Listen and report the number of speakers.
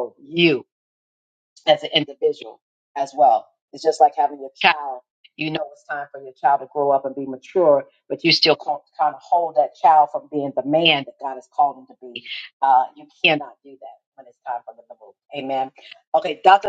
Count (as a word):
one